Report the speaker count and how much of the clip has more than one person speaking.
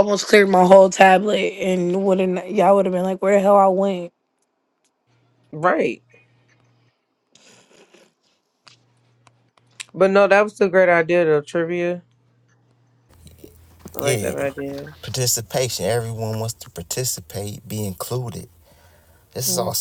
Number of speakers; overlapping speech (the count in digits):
3, about 3%